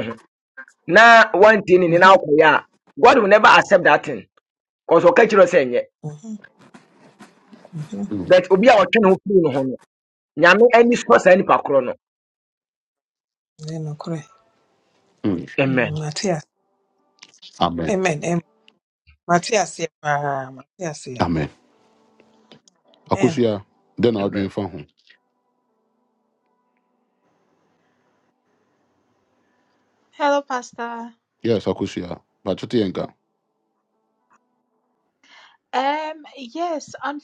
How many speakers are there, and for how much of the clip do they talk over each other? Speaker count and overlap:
4, about 3%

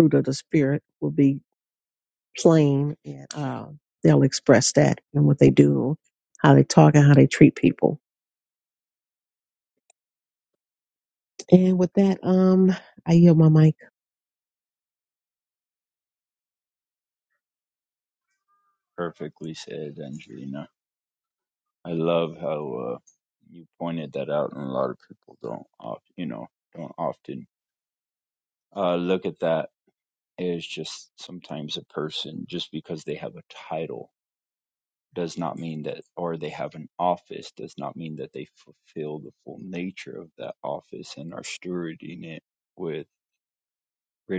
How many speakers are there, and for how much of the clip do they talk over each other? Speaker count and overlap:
2, no overlap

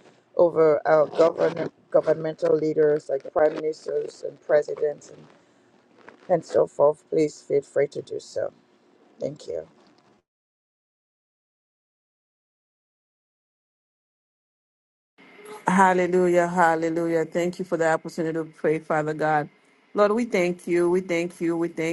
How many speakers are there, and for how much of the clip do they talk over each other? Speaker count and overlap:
2, no overlap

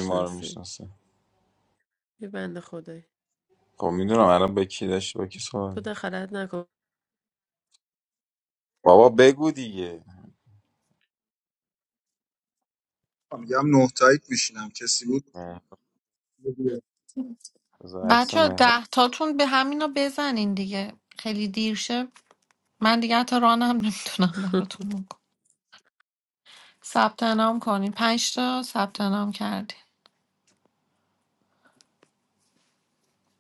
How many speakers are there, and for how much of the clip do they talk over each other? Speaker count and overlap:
4, about 4%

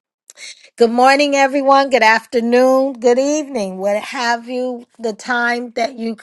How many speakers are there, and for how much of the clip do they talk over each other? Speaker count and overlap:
1, no overlap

